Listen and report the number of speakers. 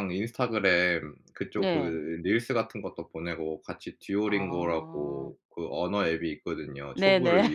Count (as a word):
two